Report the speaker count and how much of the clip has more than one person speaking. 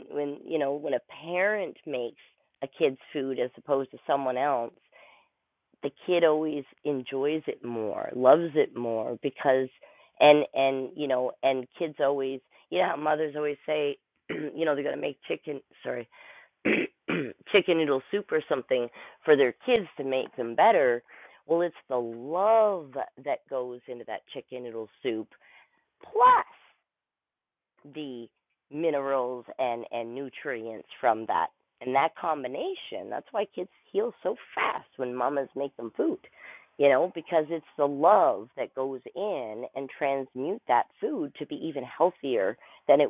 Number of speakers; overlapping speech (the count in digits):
1, no overlap